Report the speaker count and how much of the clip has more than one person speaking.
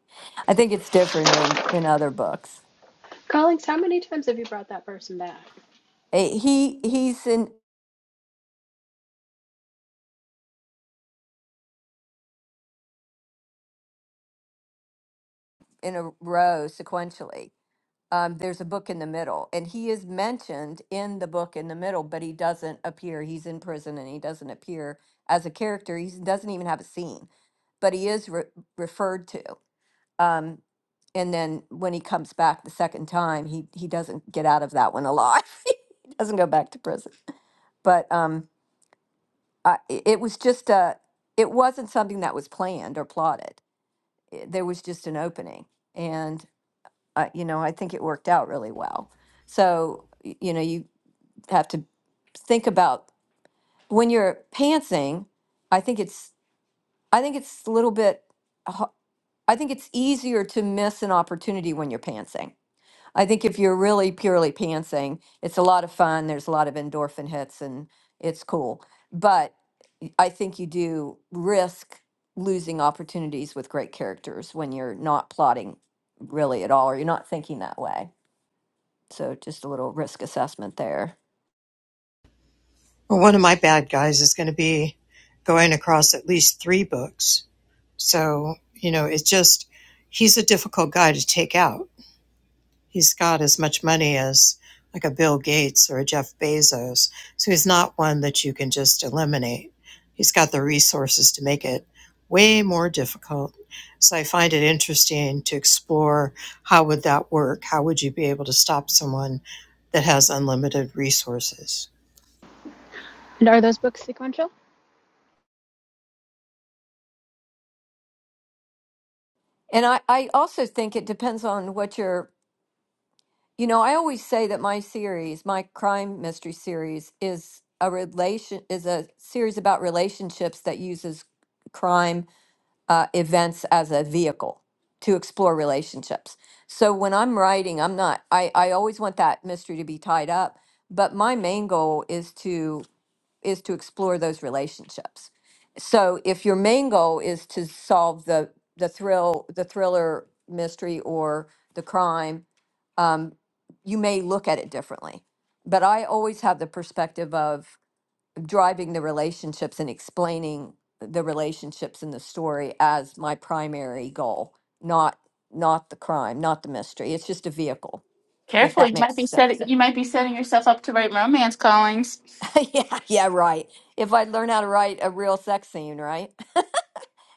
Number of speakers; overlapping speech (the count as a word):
four, under 1%